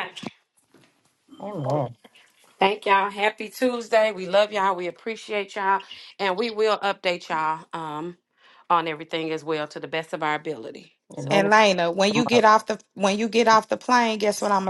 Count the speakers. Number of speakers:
three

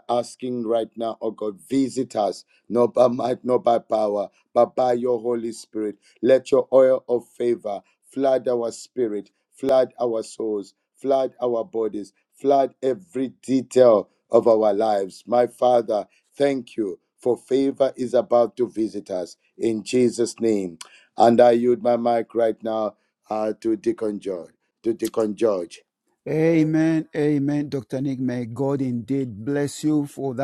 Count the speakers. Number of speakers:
two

